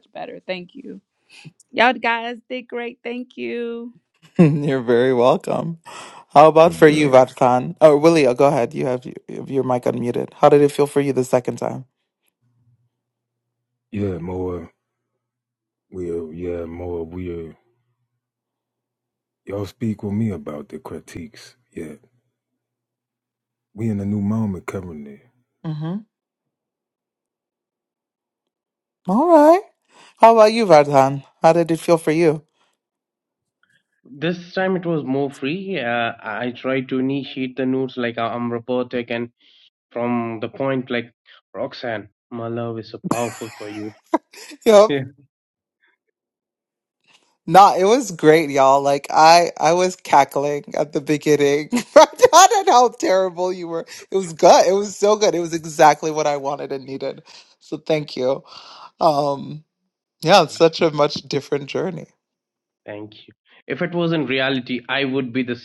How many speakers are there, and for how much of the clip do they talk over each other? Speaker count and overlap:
4, about 1%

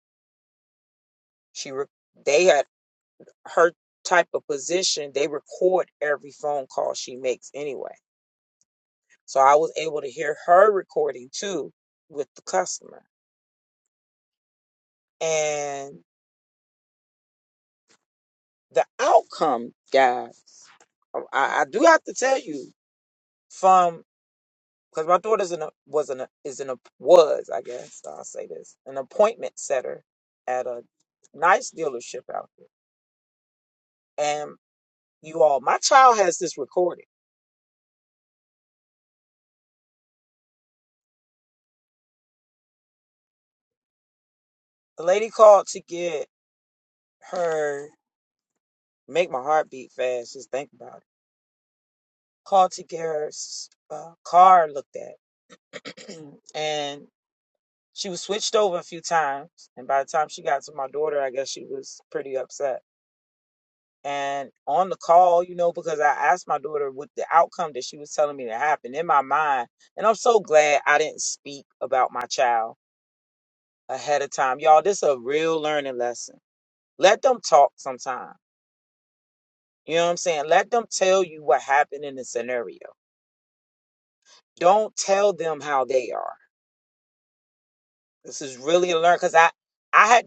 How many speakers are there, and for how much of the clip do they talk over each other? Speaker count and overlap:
1, no overlap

